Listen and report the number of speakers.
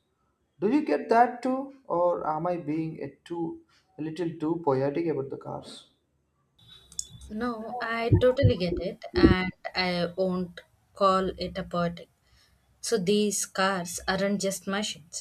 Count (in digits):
2